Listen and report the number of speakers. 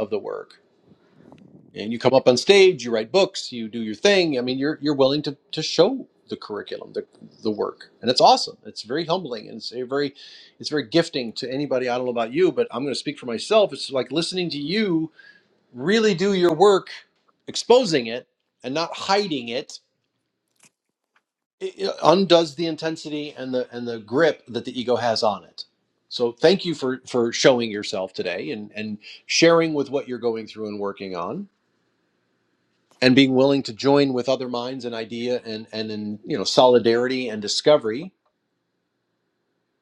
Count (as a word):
one